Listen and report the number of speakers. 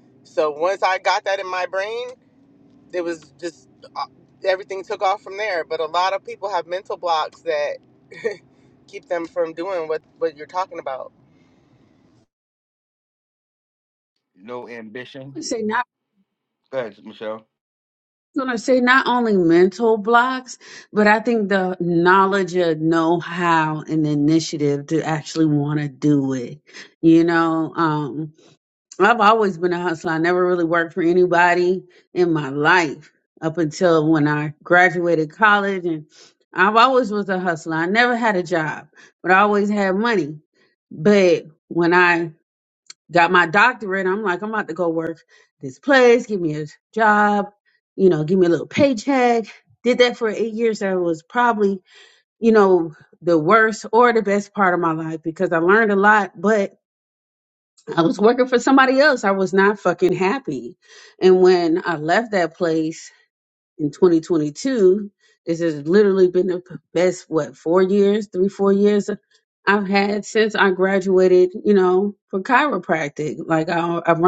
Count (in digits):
3